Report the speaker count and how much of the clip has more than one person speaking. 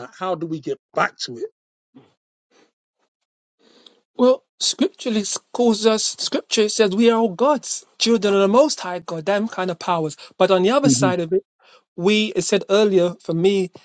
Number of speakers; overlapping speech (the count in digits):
2, about 2%